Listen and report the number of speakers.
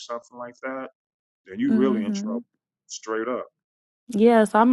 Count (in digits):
2